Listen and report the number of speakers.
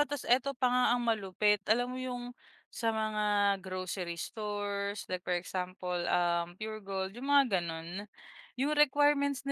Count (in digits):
1